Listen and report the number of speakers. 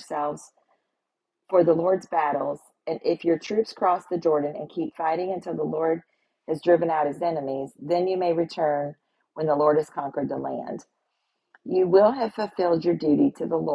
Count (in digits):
1